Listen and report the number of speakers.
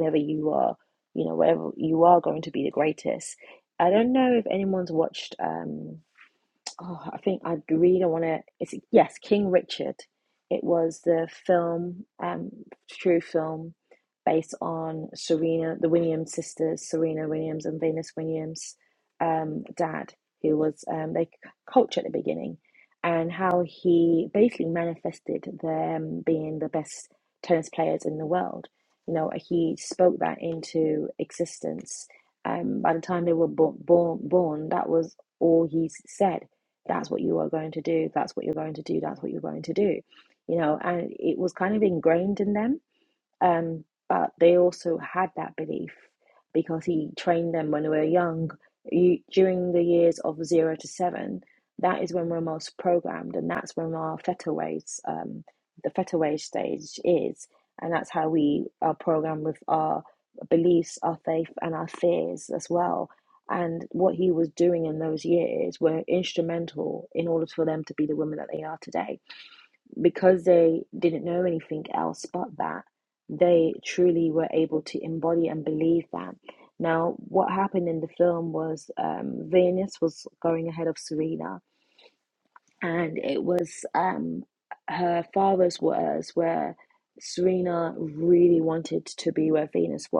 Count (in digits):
1